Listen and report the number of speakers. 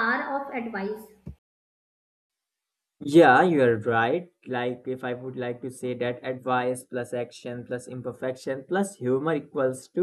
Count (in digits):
2